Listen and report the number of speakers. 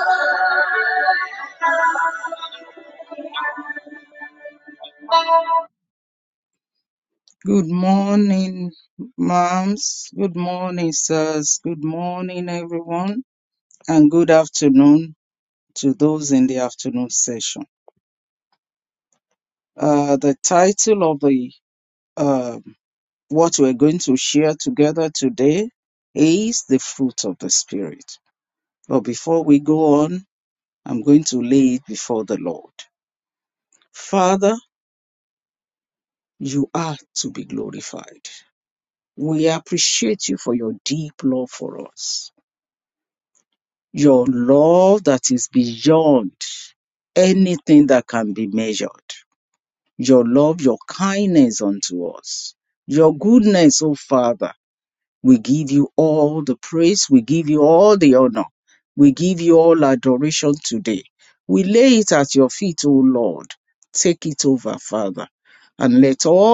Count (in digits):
1